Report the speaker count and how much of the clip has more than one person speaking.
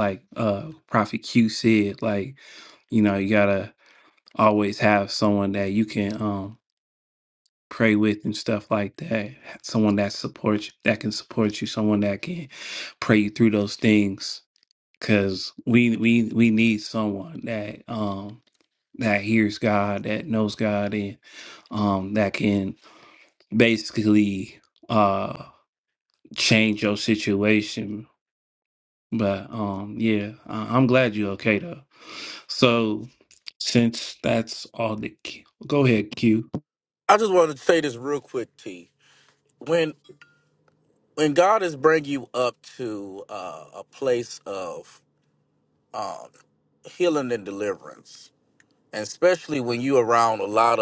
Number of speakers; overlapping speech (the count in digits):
2, no overlap